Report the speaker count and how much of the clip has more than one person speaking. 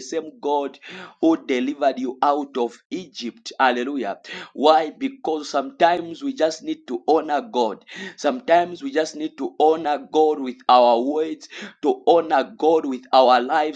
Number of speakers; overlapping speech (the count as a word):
one, no overlap